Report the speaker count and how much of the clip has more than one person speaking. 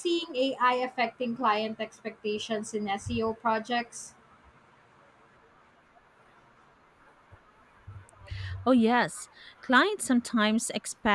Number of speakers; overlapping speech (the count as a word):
two, no overlap